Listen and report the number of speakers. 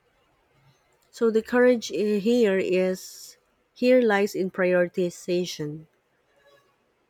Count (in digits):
1